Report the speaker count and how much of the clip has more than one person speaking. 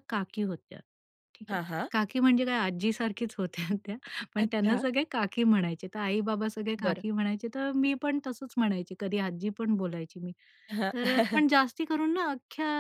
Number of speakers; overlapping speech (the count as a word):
two, about 7%